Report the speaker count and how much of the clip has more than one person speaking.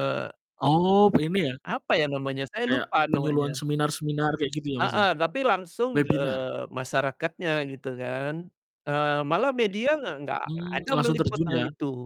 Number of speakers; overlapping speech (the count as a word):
two, about 22%